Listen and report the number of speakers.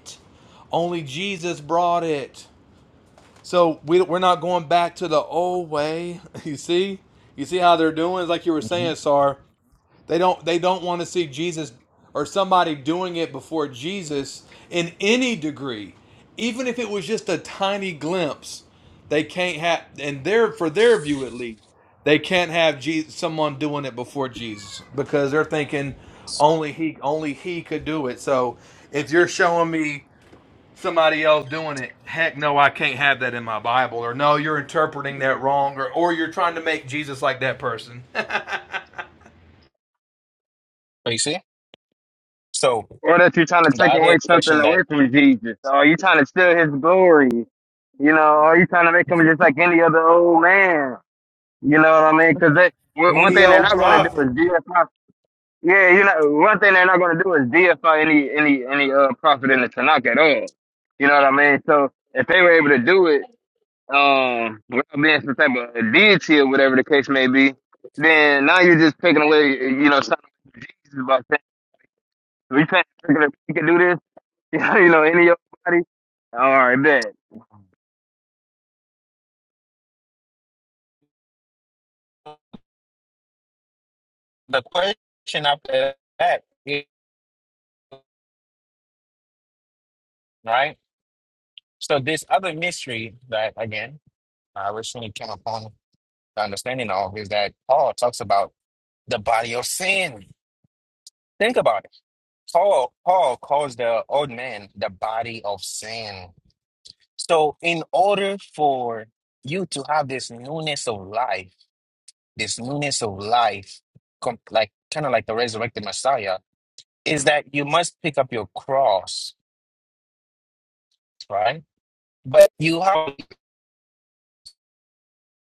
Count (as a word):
three